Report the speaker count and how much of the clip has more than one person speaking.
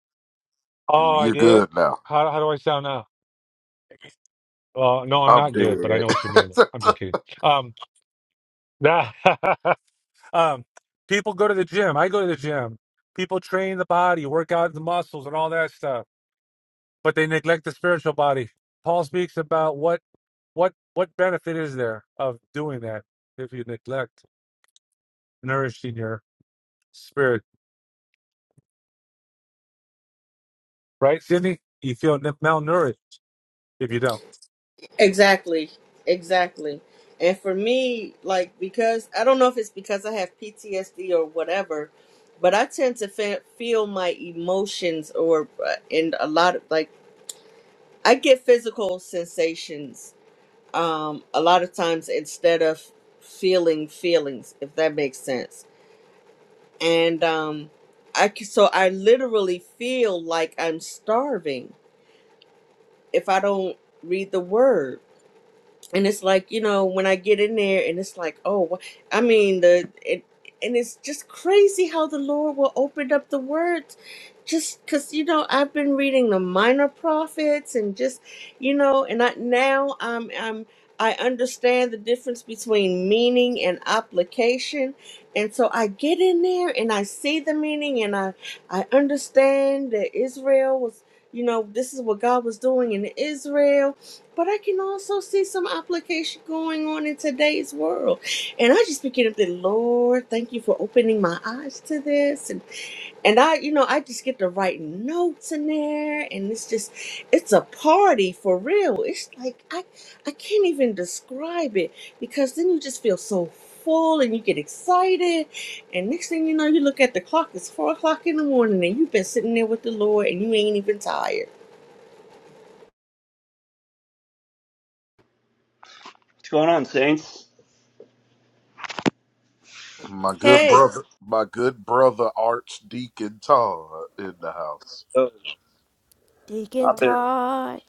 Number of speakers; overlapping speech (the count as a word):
five, about 2%